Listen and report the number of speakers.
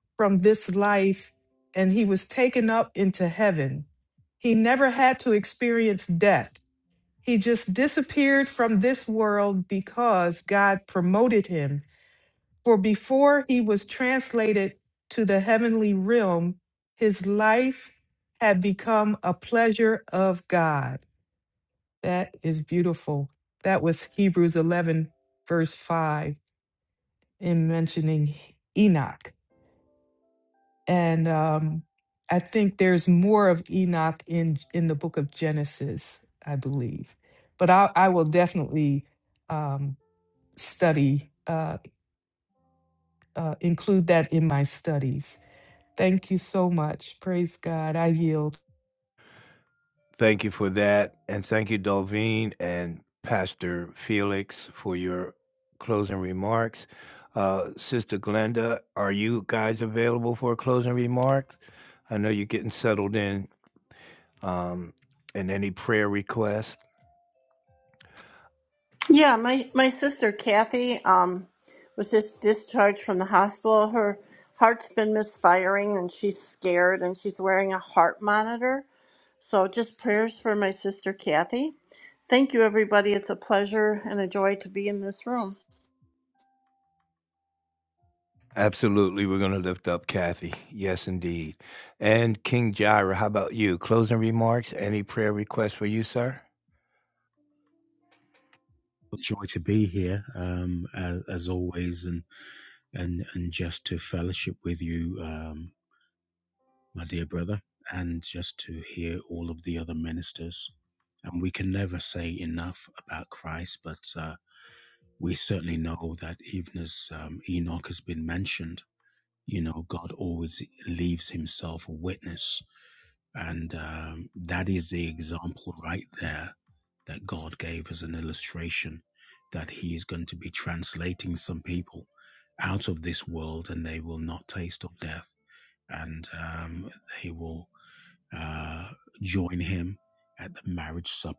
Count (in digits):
4